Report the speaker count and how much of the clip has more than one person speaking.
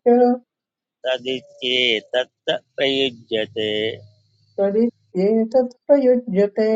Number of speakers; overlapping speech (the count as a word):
two, no overlap